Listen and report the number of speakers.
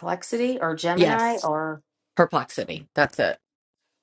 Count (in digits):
2